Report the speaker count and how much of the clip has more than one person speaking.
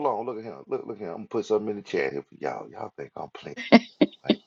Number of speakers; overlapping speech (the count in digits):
1, no overlap